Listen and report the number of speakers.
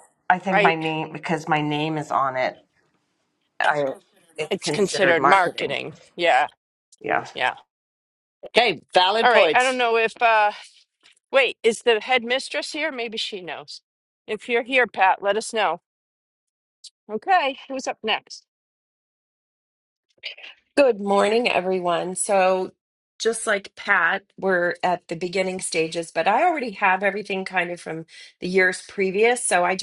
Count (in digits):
4